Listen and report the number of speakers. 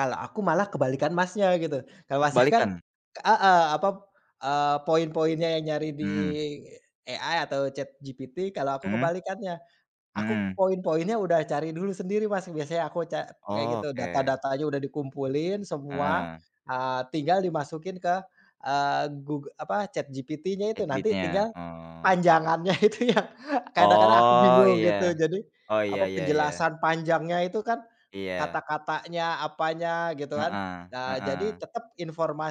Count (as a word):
two